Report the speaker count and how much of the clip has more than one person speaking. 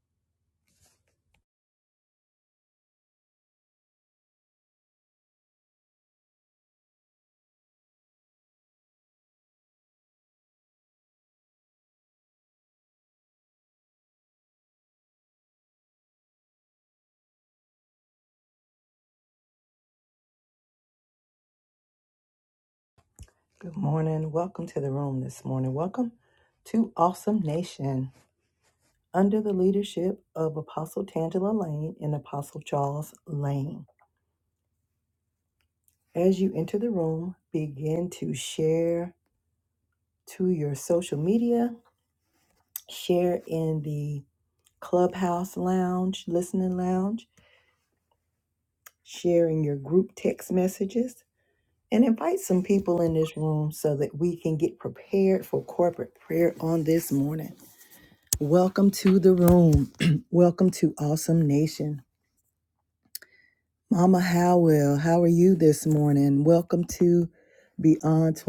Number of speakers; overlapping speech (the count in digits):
1, no overlap